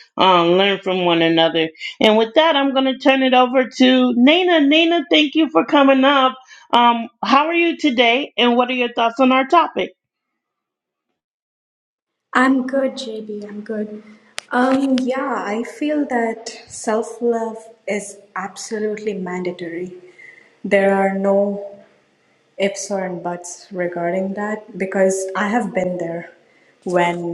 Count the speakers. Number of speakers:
2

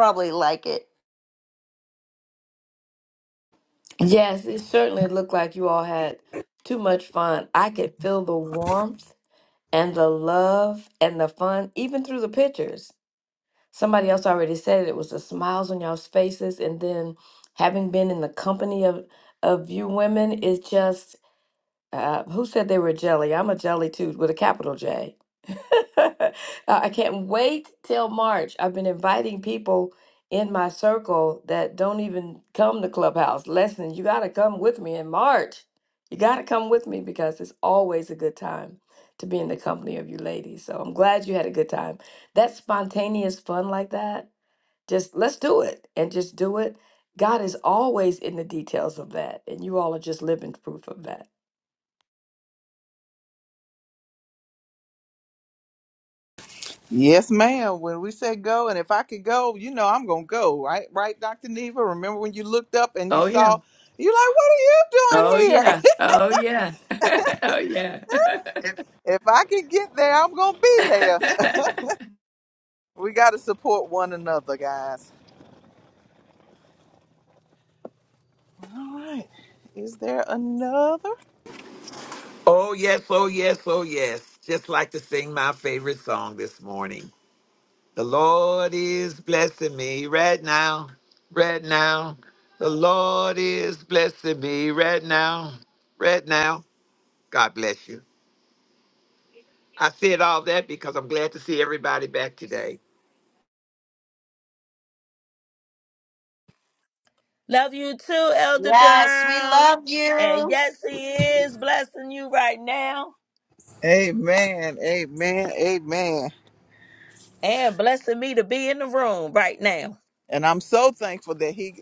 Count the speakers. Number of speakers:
5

